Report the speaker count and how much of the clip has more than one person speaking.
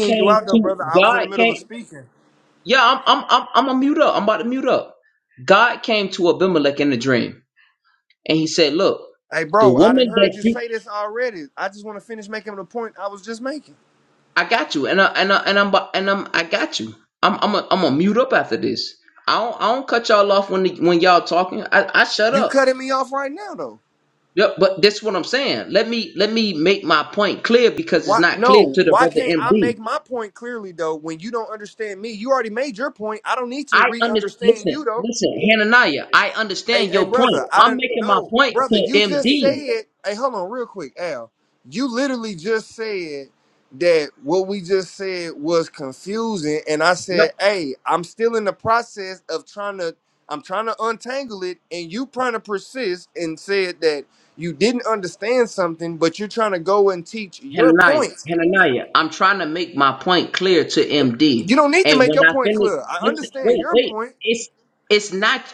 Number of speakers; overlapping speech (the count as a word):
two, about 19%